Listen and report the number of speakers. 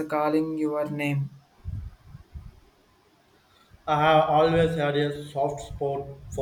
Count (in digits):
2